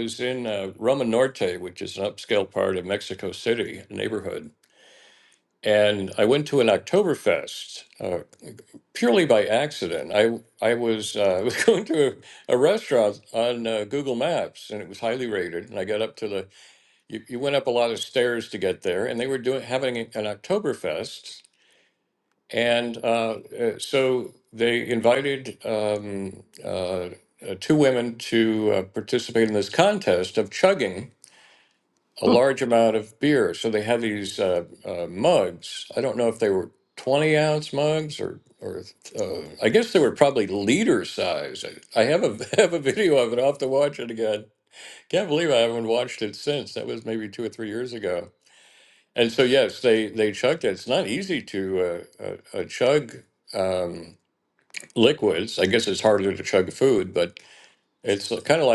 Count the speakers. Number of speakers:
1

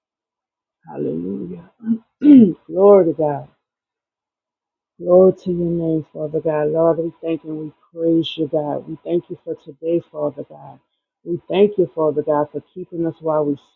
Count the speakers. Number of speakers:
1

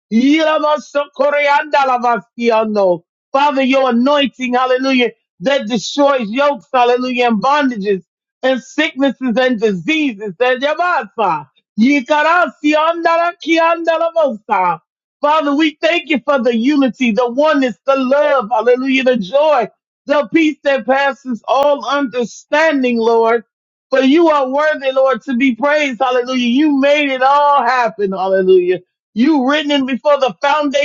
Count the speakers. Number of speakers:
1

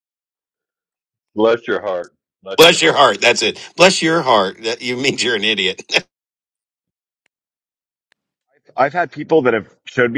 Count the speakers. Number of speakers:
3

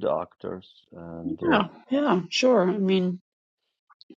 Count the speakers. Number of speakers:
2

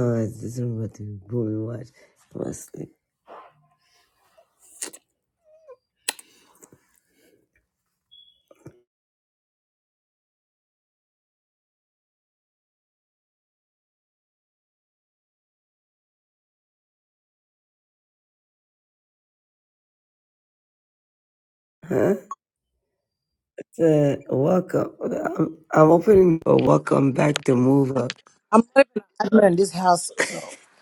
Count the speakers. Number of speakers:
2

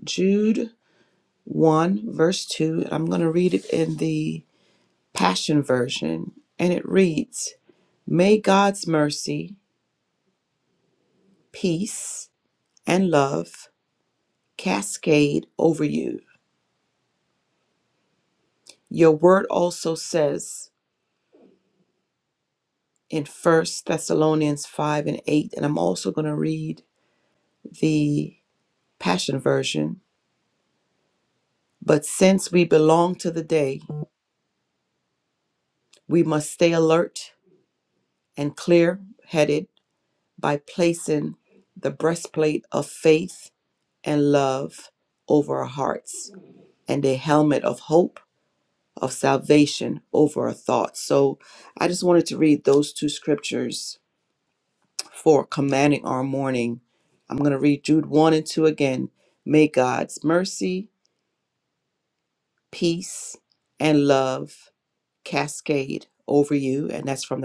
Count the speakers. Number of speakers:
1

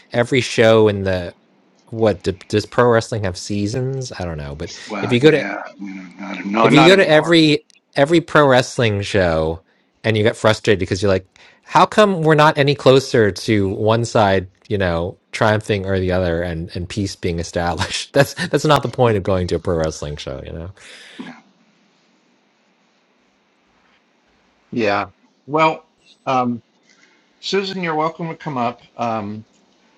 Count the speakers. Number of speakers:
3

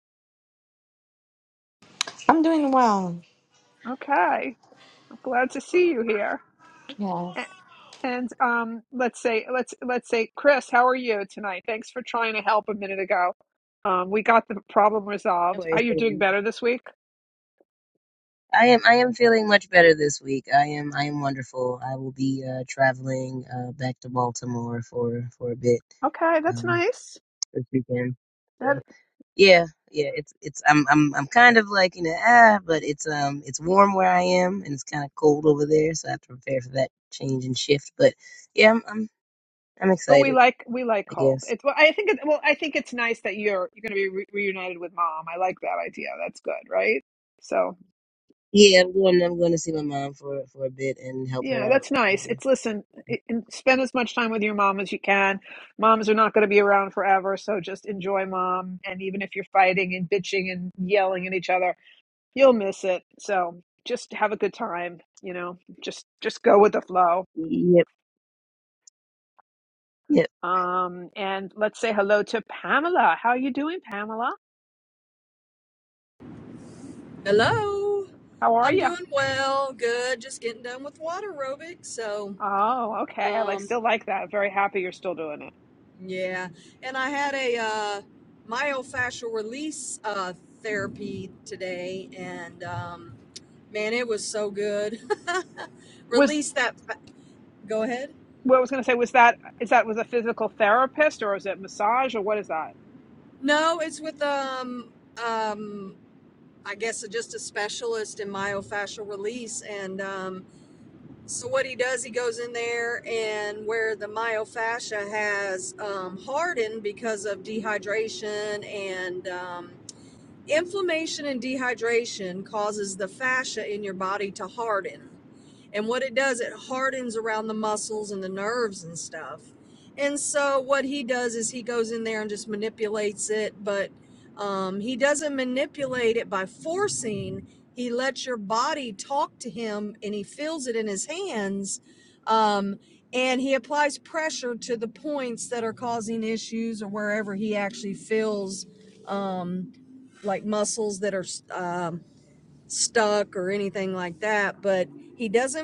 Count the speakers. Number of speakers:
4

